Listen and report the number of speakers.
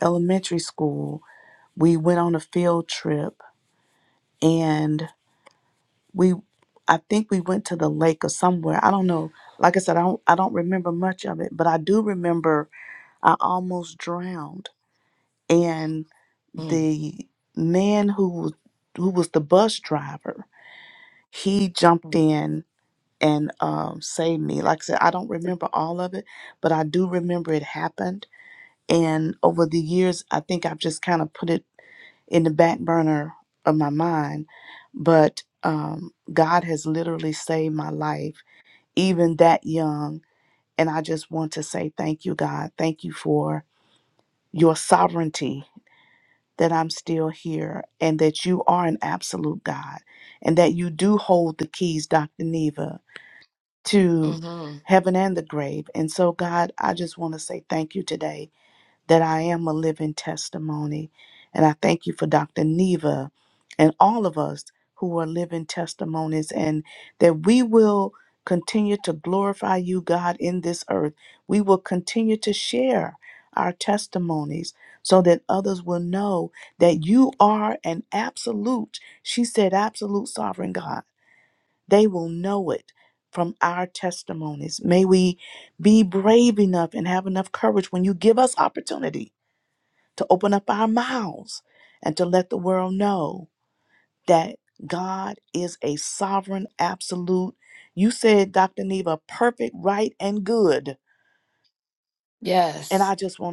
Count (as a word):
two